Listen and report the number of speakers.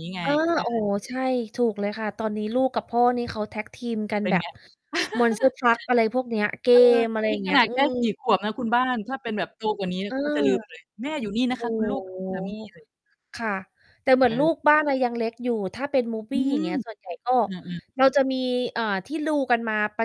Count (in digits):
2